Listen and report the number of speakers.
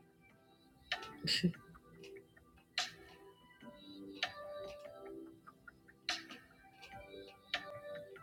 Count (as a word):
zero